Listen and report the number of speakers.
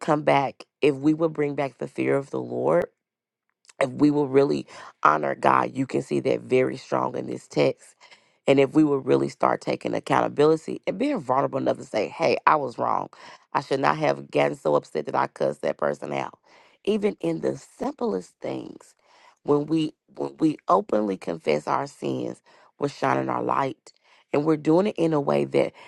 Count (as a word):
one